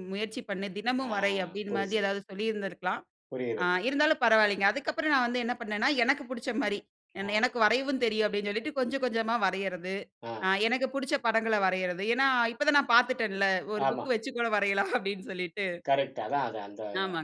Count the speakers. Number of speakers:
2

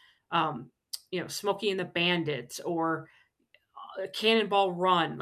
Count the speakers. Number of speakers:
1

